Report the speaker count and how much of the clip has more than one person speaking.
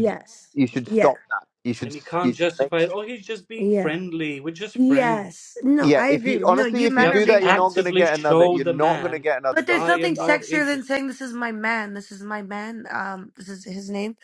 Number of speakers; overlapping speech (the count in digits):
3, about 47%